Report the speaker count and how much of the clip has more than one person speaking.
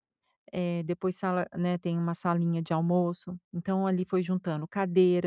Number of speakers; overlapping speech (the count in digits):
1, no overlap